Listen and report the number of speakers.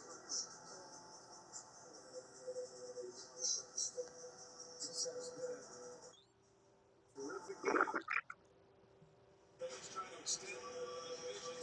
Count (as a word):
zero